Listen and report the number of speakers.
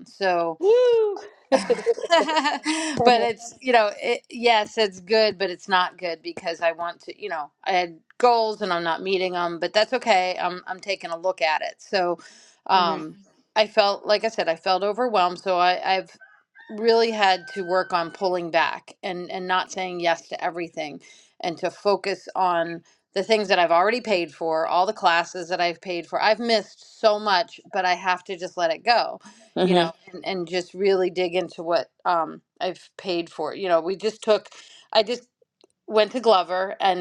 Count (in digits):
2